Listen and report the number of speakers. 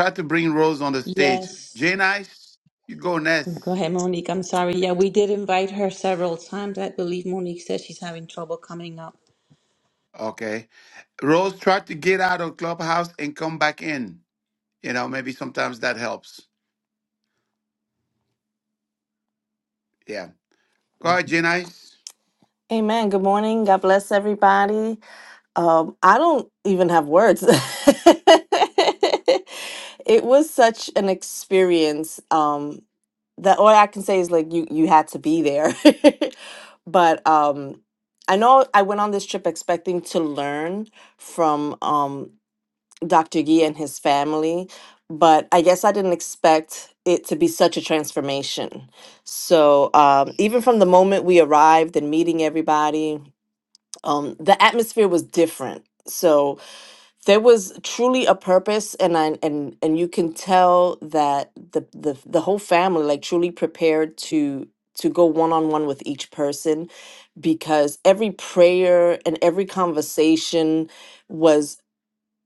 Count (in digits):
3